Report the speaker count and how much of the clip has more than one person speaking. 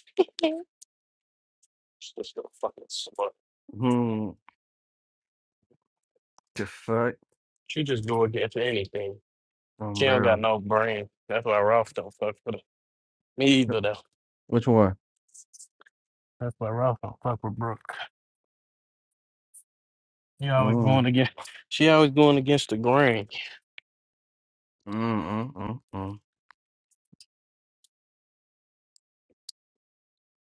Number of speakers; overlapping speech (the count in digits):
2, about 3%